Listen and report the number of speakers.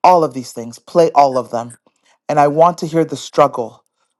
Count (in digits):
1